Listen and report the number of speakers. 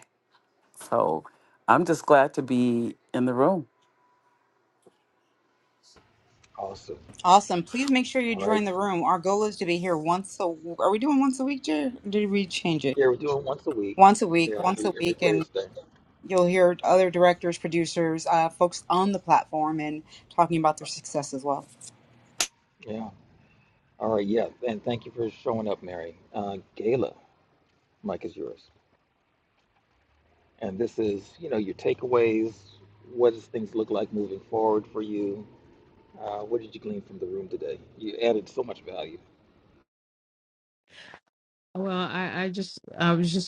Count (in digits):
4